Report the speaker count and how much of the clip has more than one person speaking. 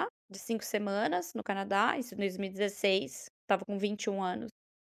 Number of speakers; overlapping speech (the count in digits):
1, no overlap